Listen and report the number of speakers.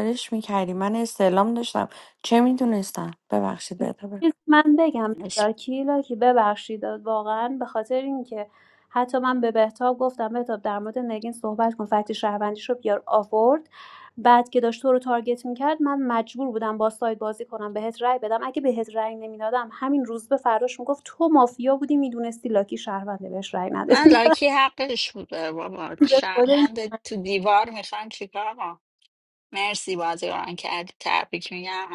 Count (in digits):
3